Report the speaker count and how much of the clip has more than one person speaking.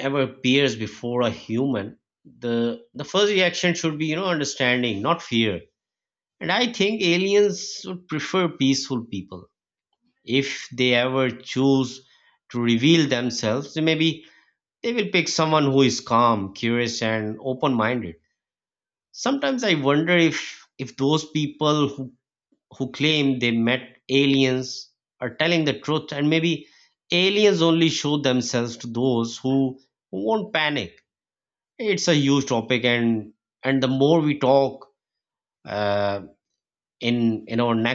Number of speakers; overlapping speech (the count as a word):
one, no overlap